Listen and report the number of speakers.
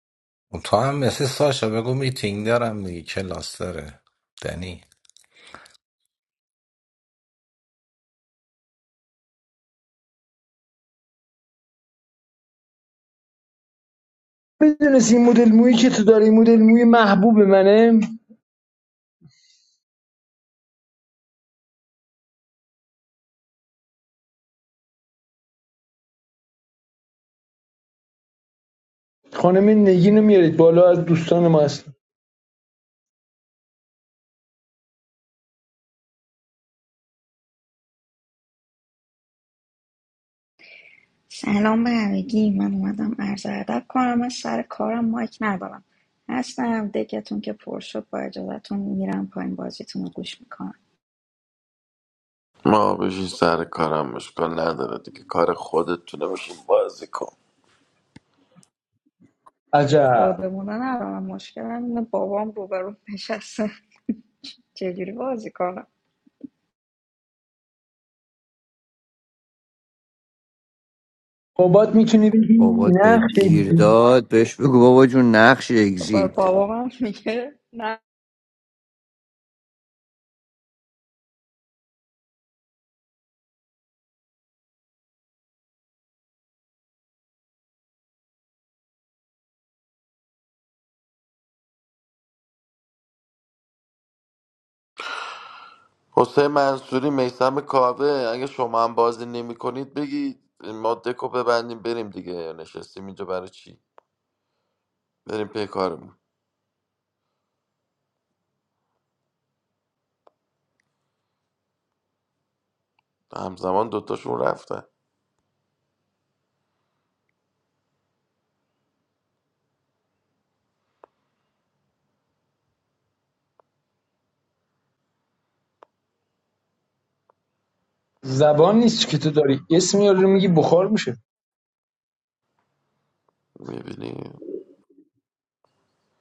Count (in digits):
5